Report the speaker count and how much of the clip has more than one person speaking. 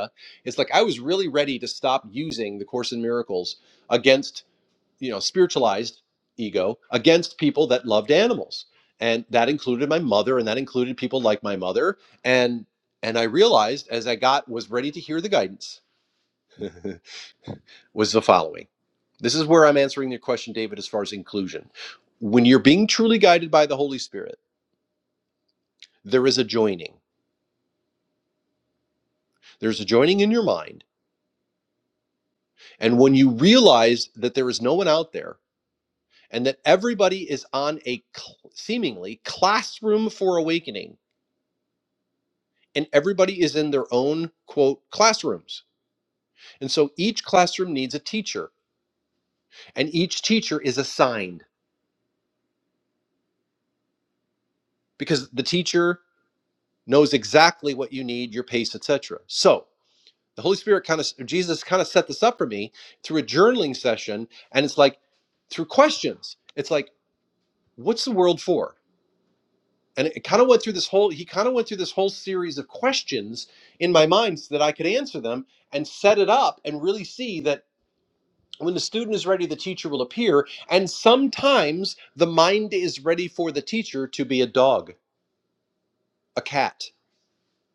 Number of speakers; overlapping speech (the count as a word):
one, no overlap